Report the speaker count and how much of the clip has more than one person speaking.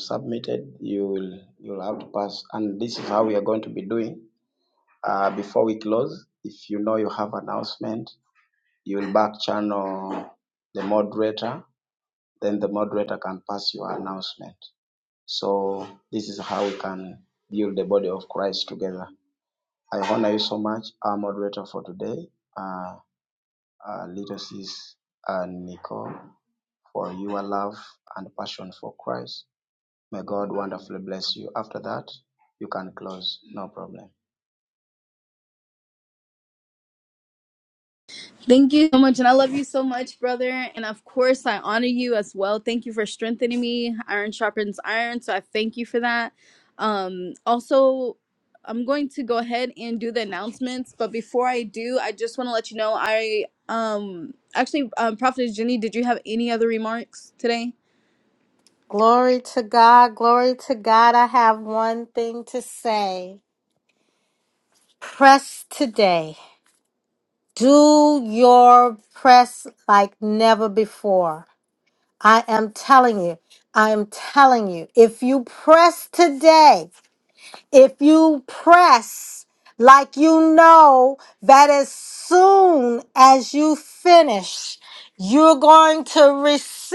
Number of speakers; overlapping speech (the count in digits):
3, no overlap